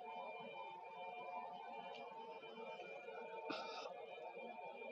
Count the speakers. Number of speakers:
0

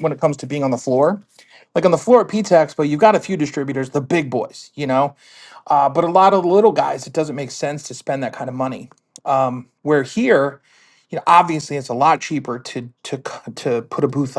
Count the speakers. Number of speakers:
1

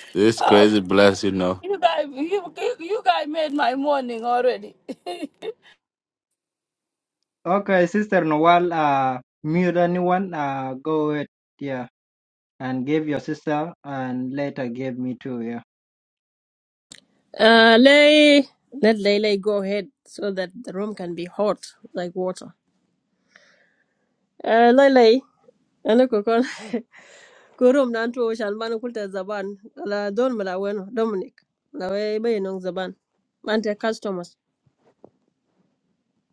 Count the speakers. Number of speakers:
4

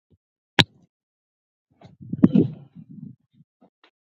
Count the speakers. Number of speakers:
0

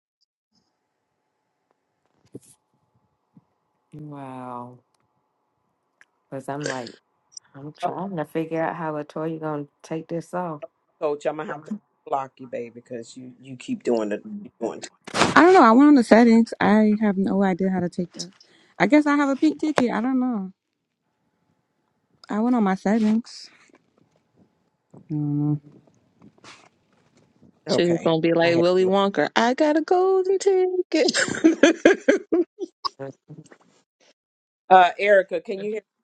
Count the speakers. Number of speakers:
4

